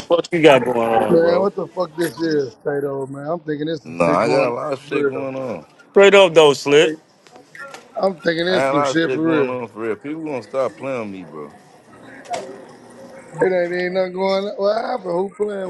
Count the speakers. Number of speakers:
three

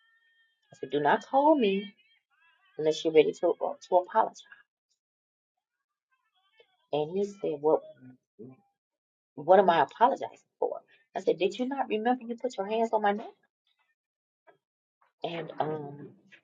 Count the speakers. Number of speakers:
one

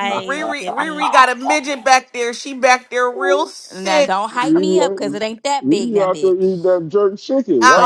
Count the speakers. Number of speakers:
three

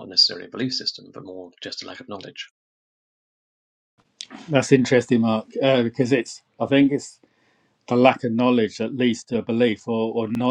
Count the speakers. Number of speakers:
two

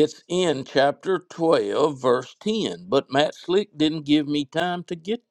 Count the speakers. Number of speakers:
one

